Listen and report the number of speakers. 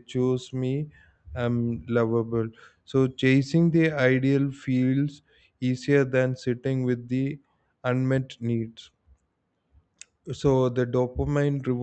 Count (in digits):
1